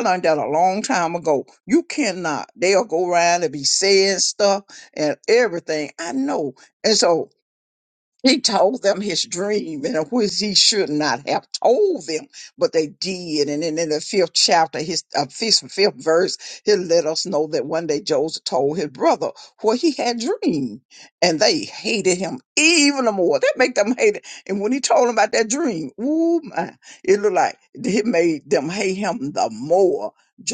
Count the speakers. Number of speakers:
one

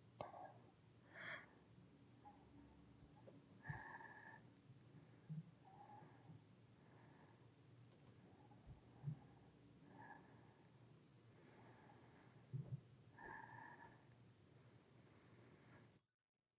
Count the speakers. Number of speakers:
zero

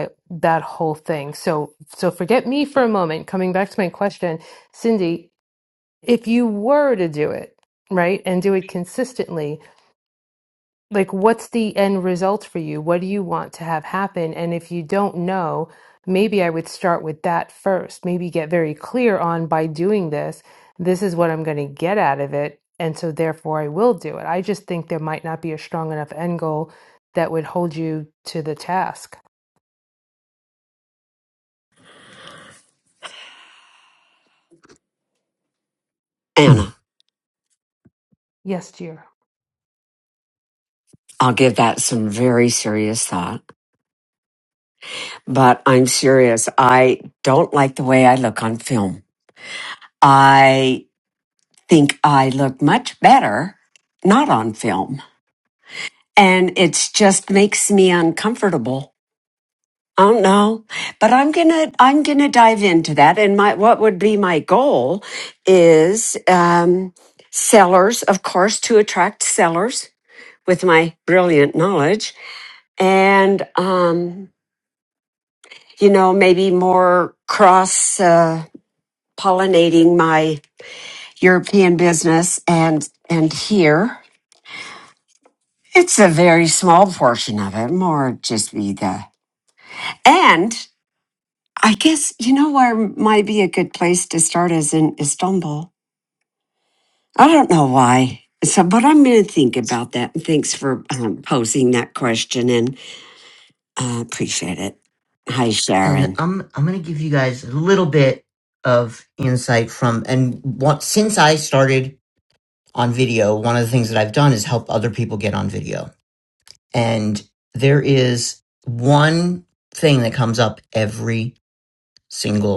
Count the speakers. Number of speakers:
three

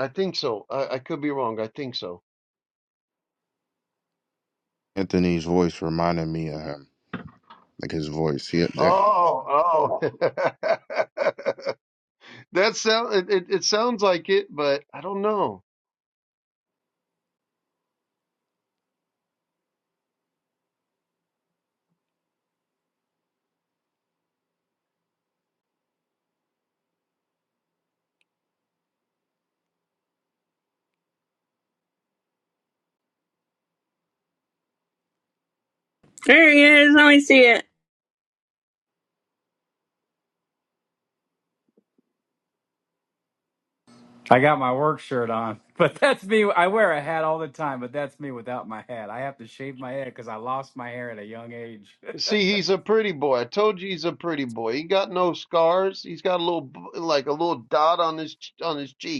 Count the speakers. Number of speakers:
four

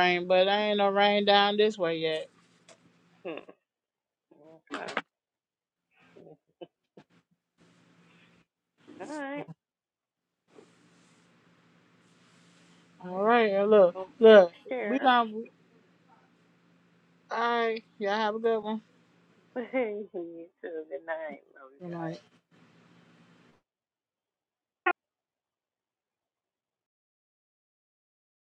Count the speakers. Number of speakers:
two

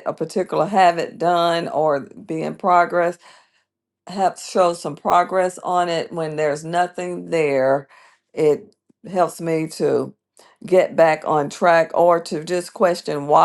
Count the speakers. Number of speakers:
one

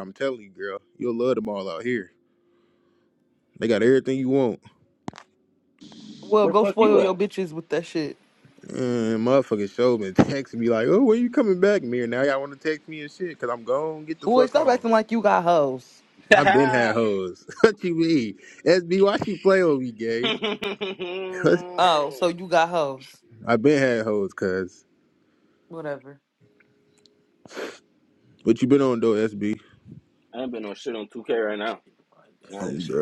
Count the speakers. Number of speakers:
three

